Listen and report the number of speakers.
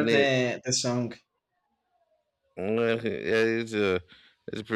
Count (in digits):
2